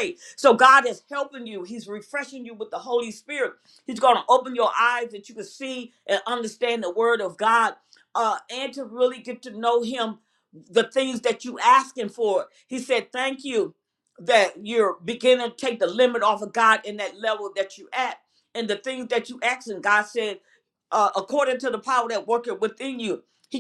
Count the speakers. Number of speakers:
1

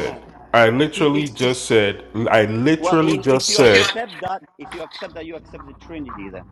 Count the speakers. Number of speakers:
2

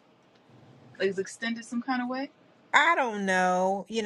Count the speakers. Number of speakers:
2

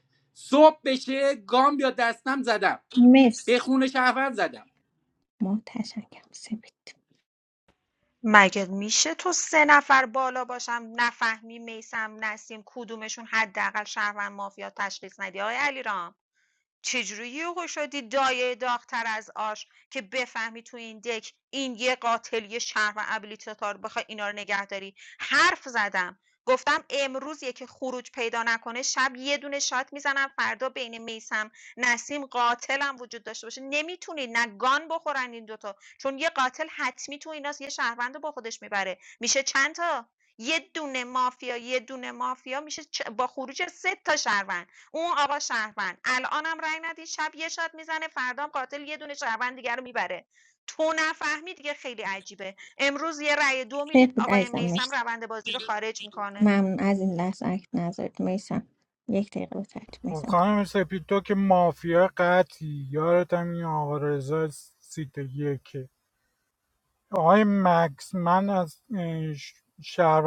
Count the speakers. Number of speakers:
4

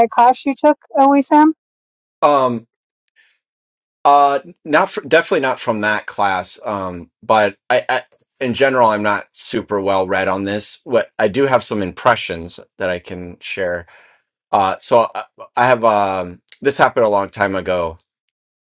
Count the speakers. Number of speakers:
2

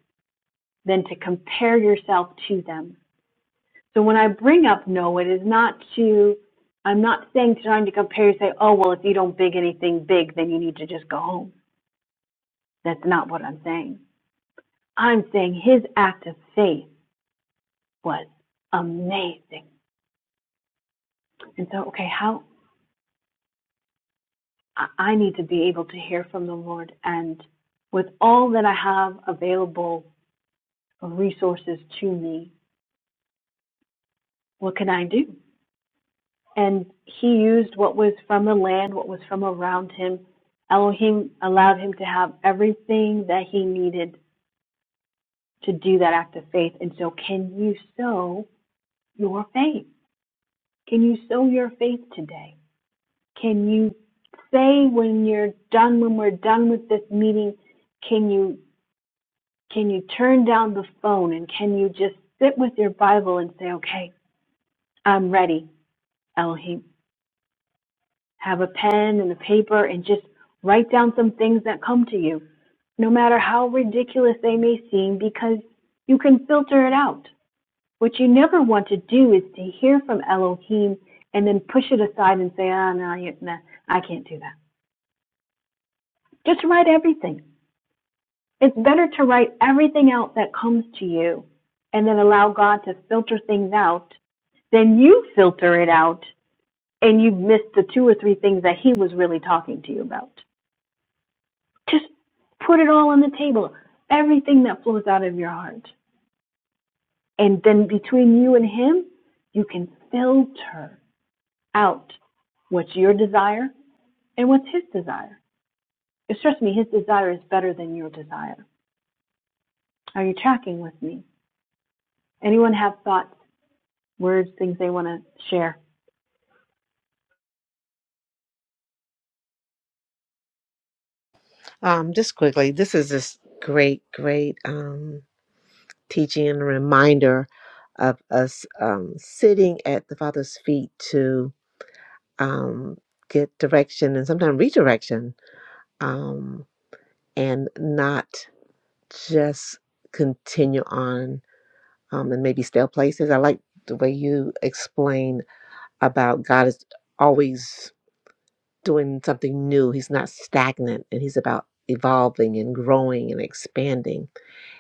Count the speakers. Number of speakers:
2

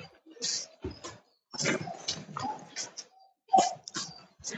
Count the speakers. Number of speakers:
0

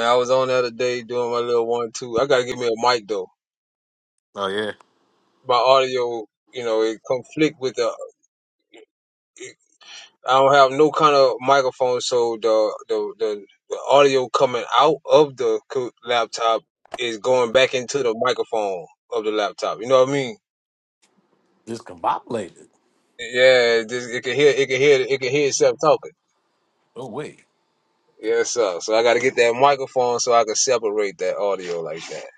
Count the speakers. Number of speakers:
2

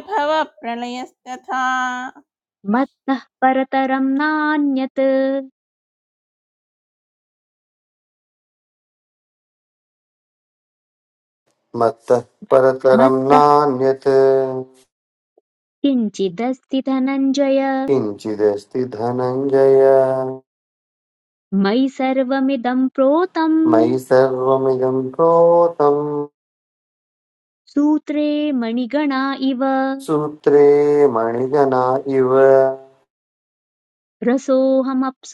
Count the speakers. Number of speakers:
3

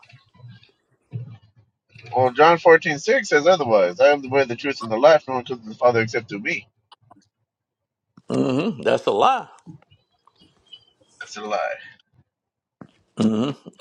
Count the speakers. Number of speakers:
2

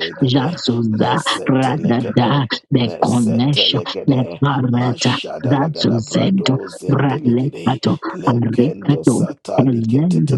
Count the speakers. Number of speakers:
2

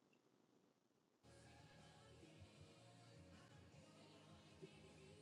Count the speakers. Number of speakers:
0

